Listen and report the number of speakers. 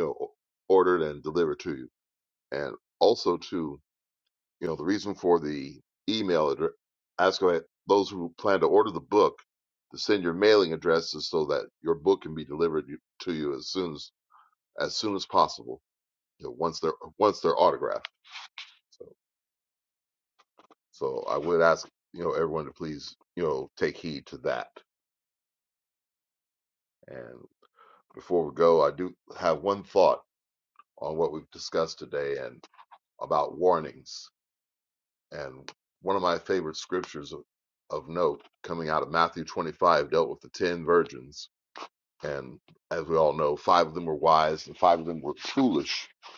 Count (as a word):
one